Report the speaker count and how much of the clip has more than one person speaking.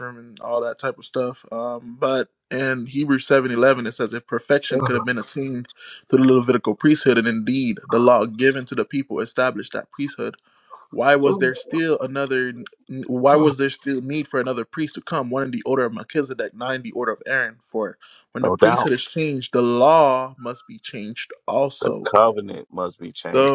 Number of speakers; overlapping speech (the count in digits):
2, about 4%